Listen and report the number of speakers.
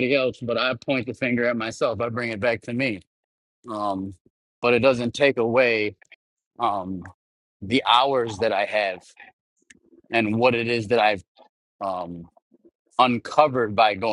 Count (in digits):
1